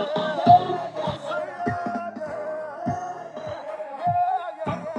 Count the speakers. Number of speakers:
zero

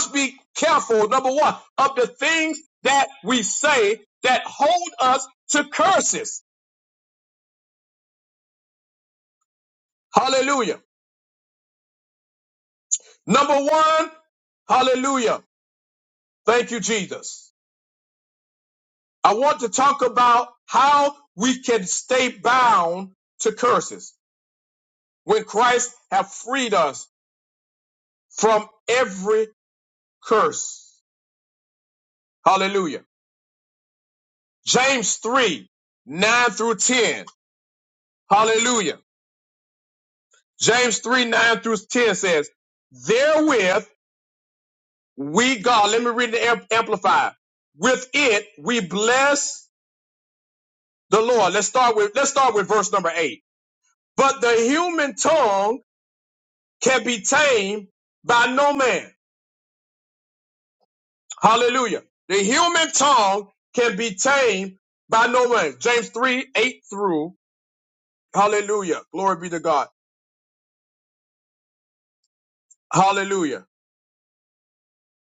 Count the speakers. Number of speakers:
one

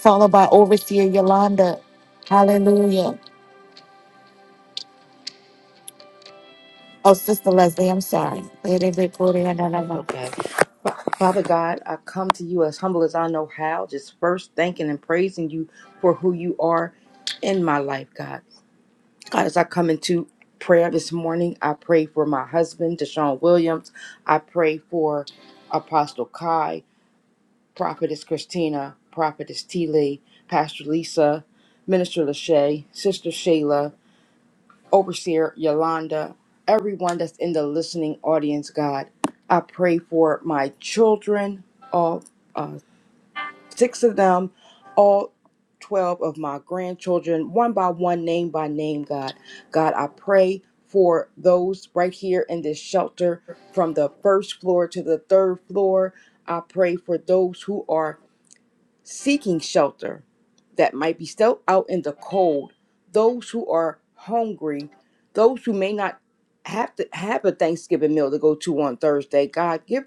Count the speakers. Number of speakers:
two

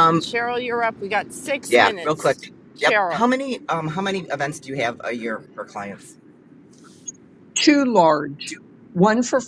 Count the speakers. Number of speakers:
three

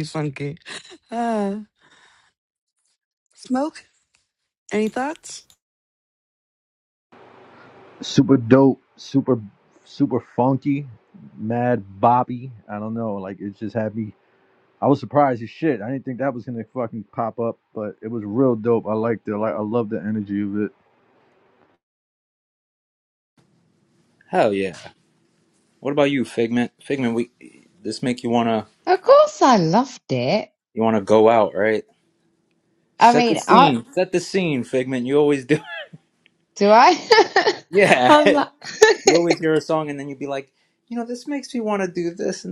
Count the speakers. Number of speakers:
four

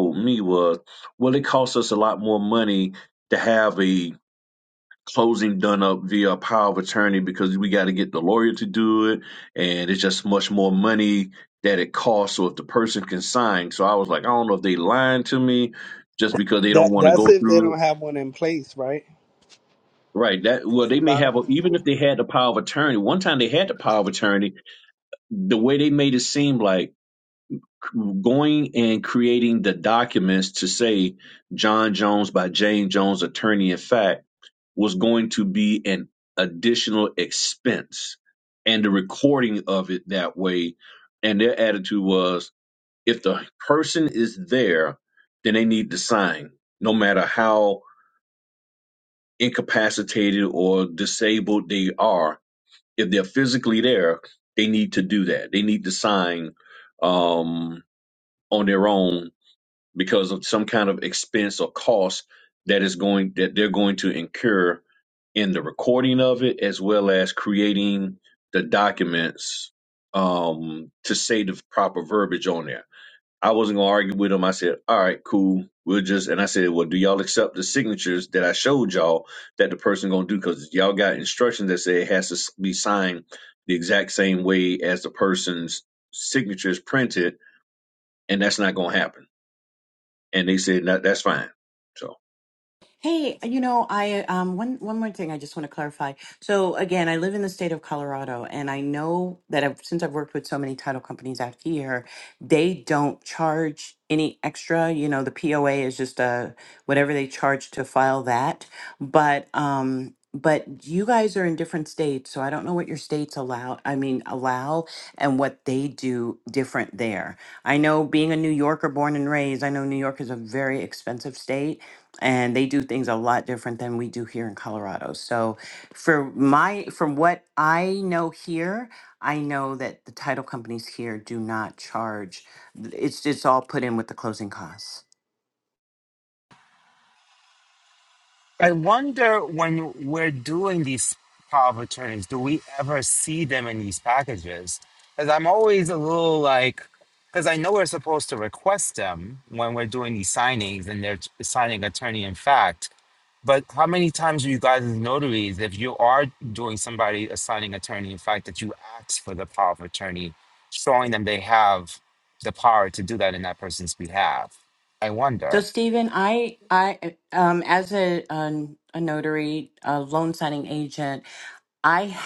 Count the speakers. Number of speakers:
four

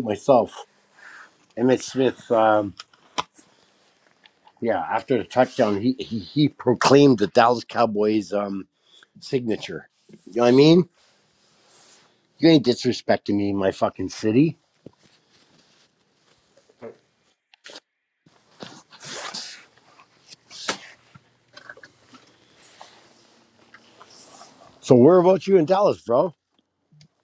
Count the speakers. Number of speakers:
one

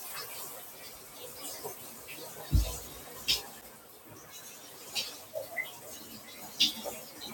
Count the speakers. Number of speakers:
zero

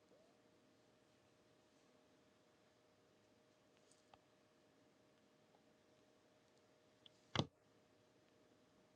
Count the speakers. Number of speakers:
zero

